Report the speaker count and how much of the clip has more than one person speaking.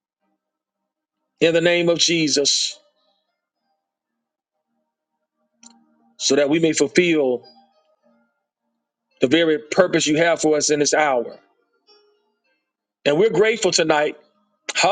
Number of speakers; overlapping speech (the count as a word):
one, no overlap